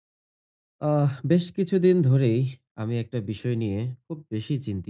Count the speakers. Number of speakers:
one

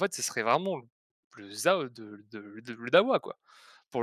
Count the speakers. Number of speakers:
one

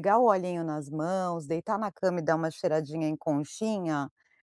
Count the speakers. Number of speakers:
one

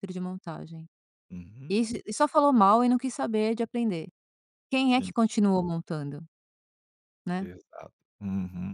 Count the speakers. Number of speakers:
two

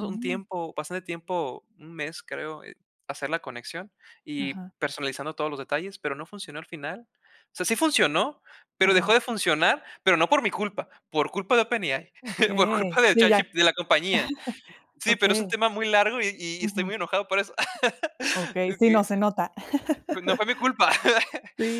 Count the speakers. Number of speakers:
two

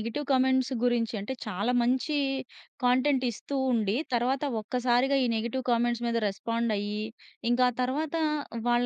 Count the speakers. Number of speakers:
one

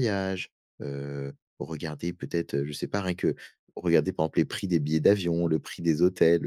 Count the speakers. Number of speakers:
one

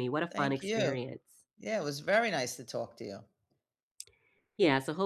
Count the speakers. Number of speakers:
two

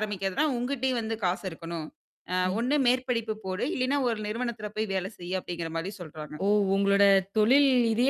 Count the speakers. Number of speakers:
two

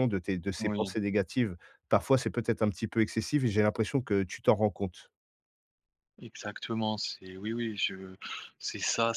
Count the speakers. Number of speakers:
two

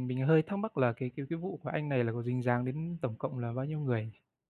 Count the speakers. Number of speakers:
one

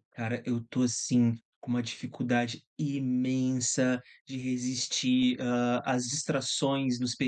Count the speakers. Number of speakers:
one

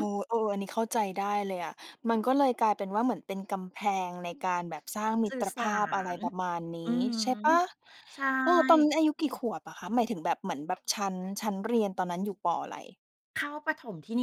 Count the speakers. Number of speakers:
two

